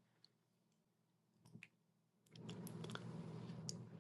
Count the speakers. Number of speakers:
0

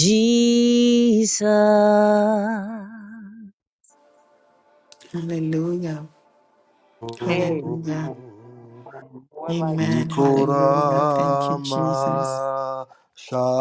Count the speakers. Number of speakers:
4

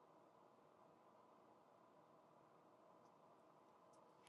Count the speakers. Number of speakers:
0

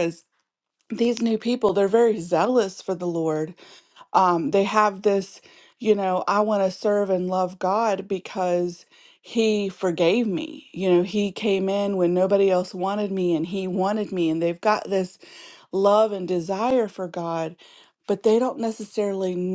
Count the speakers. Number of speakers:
1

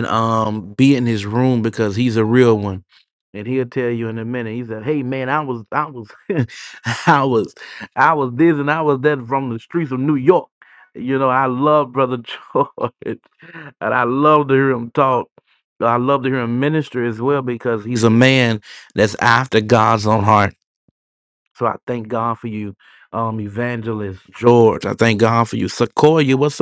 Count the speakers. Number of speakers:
1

